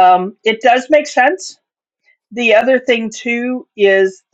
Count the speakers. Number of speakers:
1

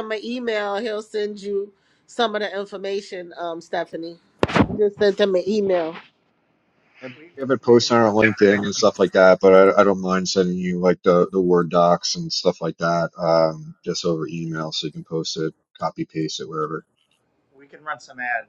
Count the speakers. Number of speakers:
3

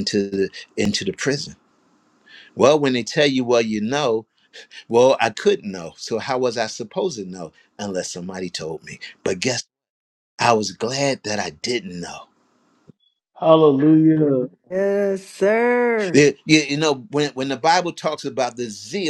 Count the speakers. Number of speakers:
3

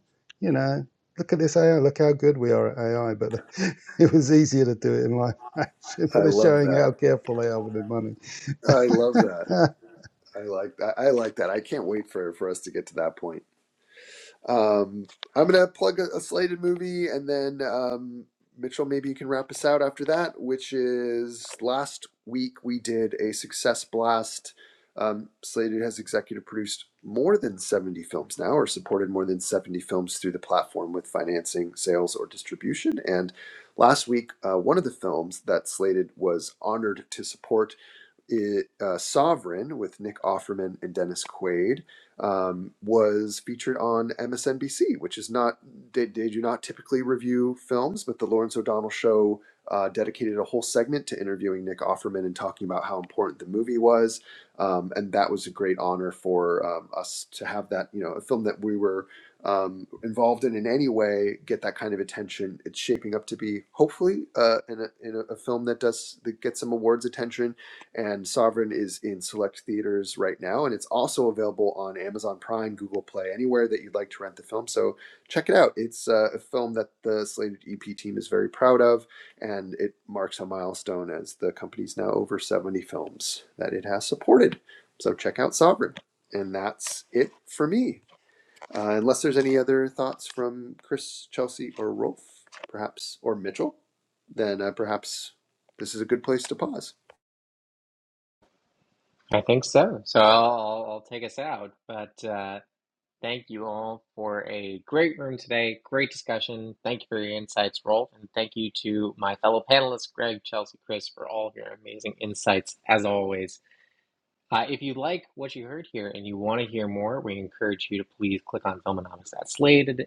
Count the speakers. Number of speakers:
3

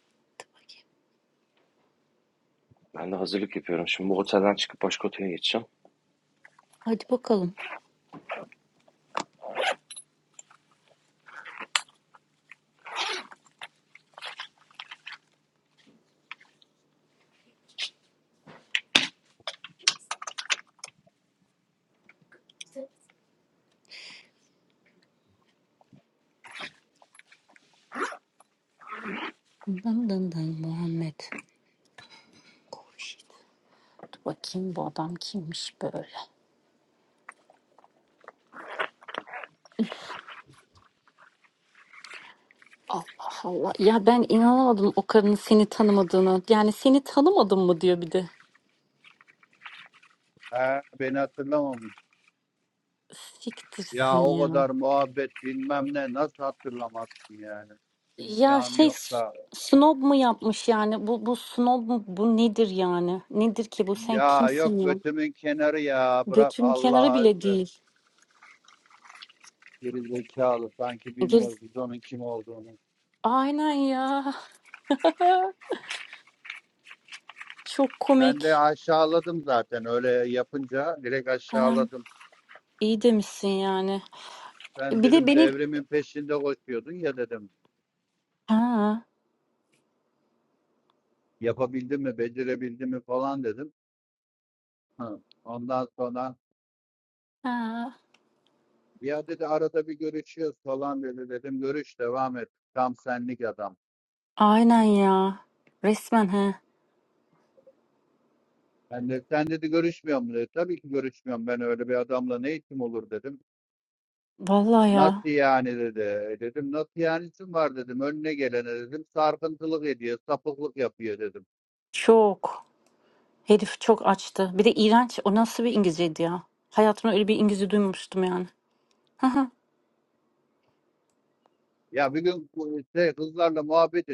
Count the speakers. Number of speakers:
3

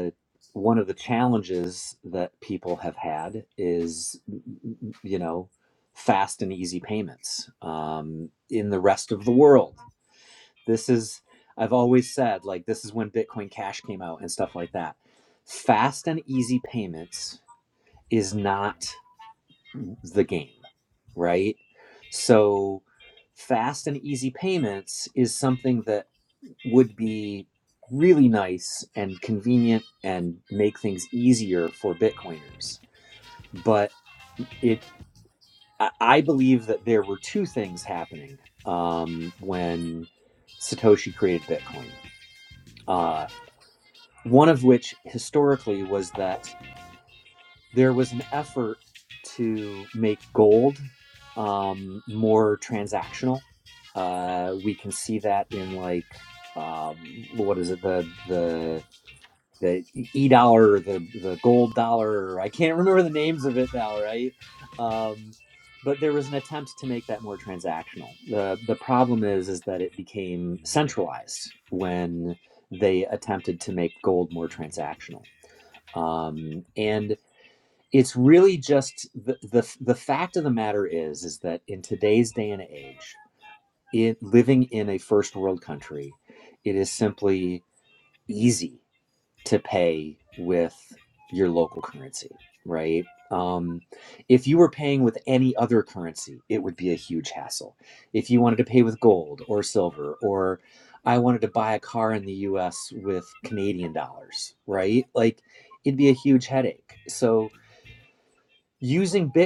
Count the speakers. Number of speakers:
1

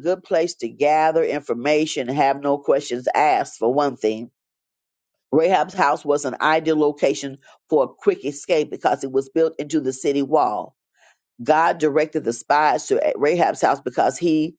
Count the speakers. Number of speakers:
1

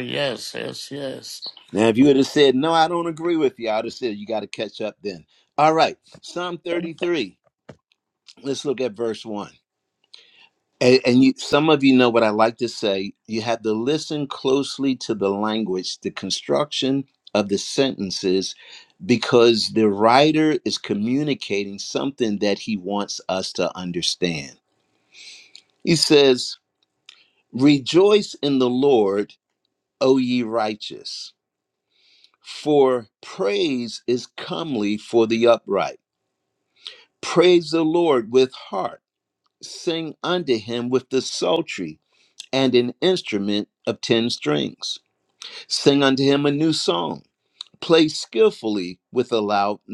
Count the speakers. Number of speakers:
2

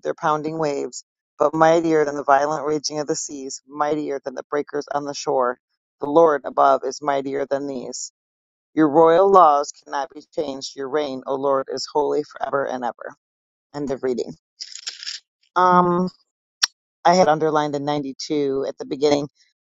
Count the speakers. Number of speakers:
1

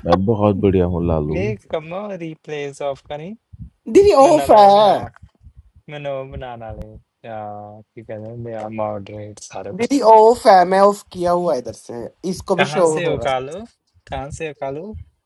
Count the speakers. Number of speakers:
3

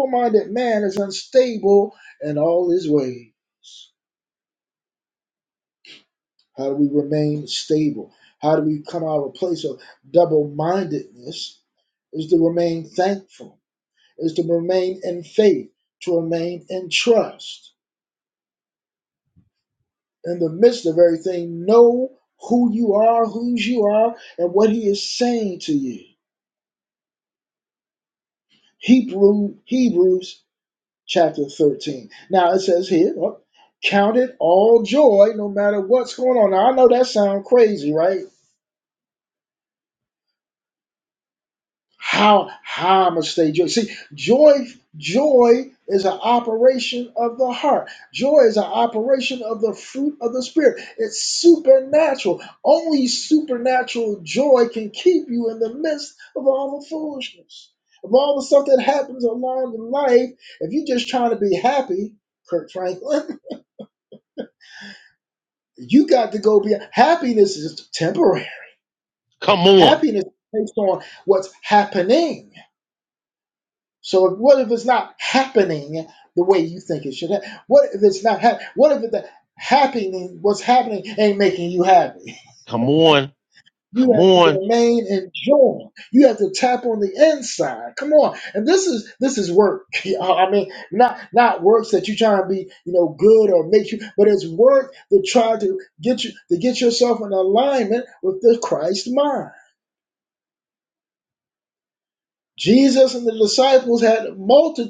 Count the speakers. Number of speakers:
2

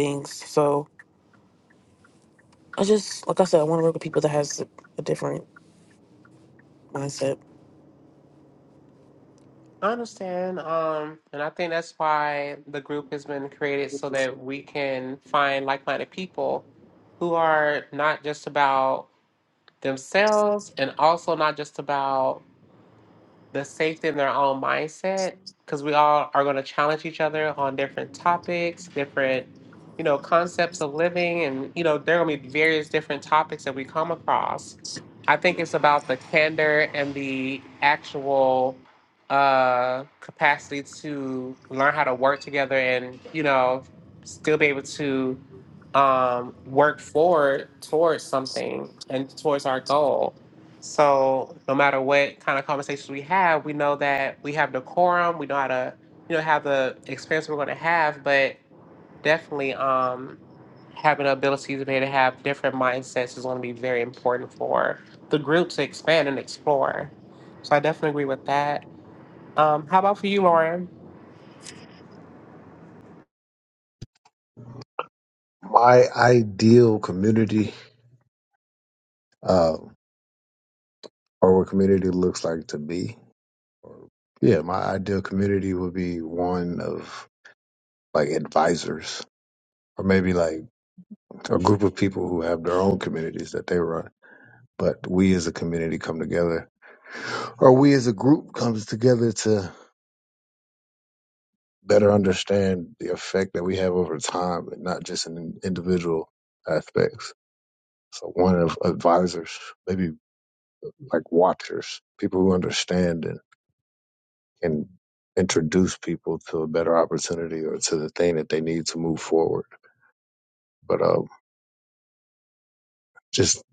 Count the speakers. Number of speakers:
3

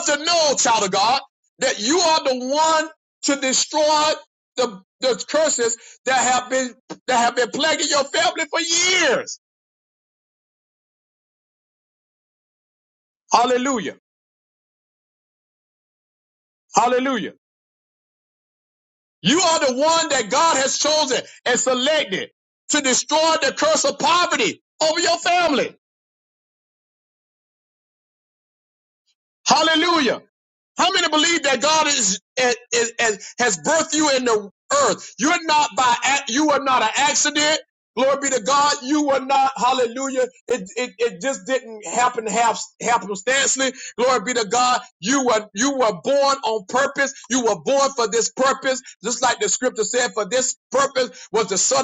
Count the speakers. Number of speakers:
1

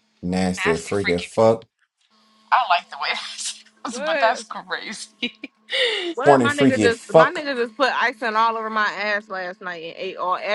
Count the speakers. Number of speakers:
3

